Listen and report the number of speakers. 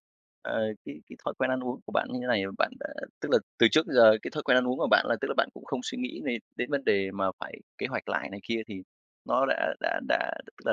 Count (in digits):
1